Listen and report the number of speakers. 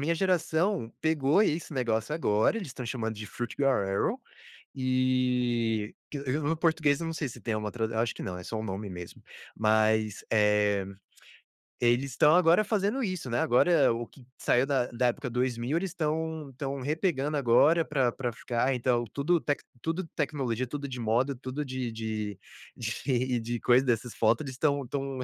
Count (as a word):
one